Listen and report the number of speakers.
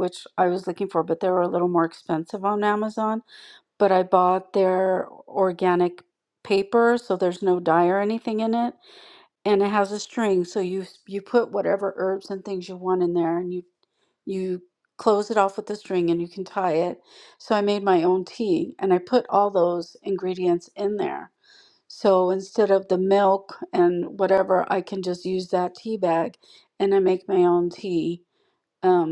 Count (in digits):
1